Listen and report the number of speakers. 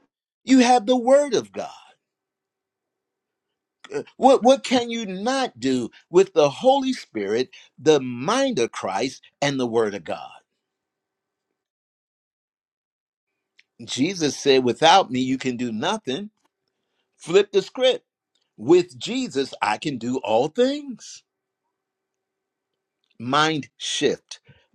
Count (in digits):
1